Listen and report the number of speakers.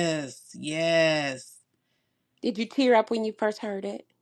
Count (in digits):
2